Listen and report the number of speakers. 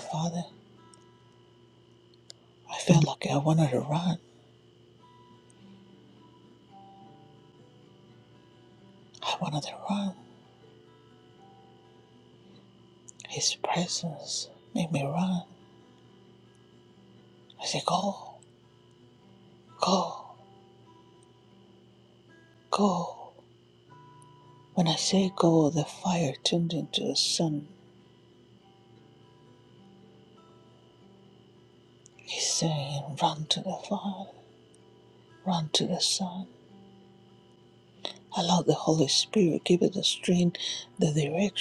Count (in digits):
1